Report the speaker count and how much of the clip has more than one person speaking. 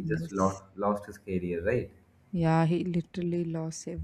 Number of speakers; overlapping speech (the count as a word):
two, about 5%